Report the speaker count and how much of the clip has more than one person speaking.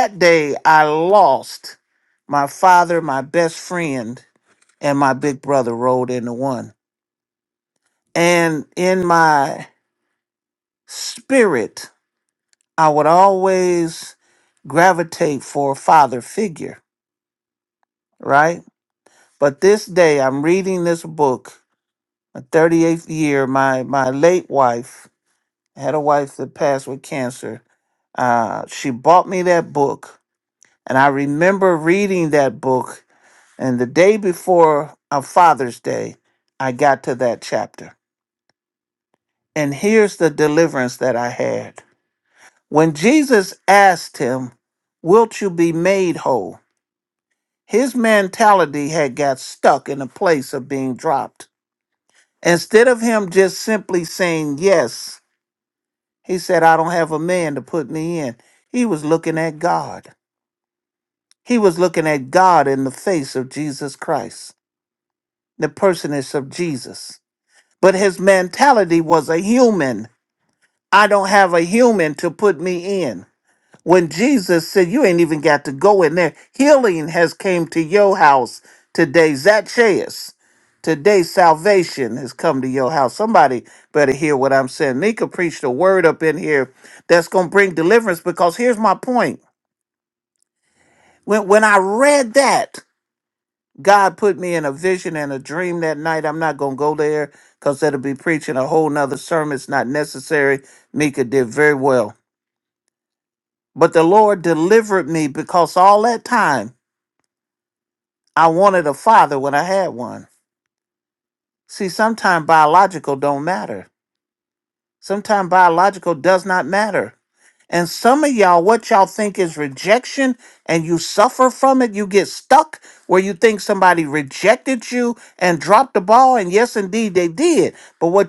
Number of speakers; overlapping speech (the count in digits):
1, no overlap